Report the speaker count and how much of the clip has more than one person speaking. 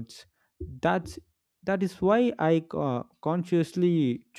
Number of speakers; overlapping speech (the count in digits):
1, no overlap